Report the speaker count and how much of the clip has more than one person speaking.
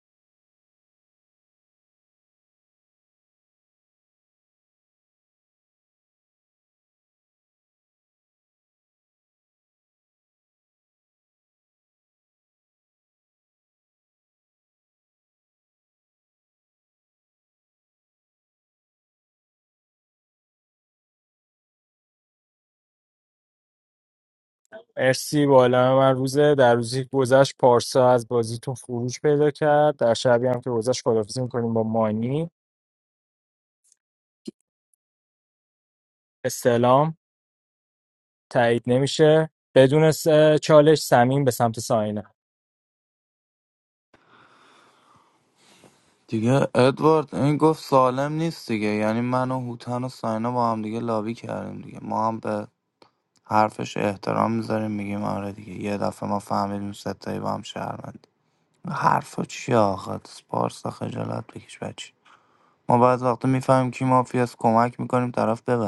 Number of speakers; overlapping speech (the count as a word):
two, no overlap